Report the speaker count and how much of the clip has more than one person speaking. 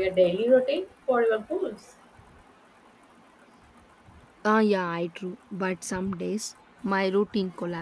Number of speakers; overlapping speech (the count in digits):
2, no overlap